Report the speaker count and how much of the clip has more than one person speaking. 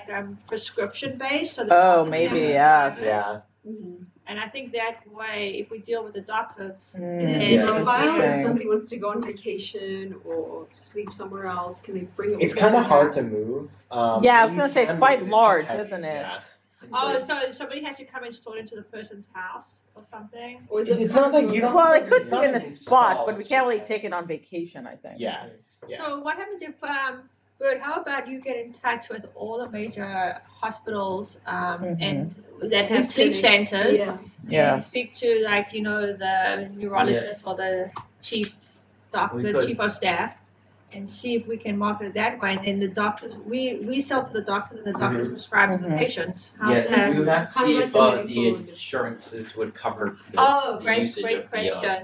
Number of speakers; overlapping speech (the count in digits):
5, about 34%